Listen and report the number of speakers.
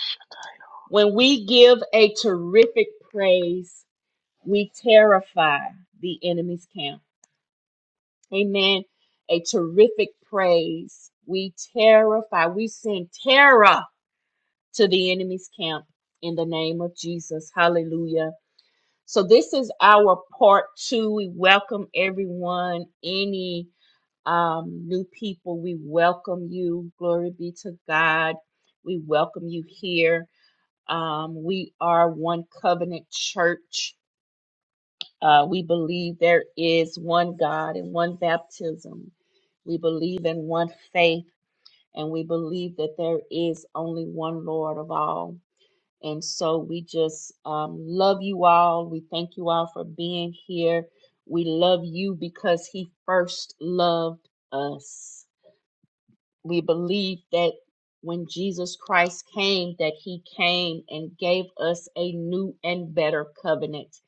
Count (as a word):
one